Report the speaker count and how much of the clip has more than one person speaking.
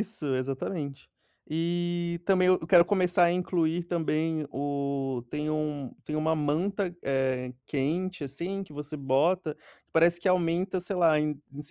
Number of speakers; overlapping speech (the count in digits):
1, no overlap